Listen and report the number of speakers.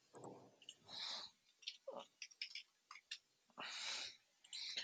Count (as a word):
zero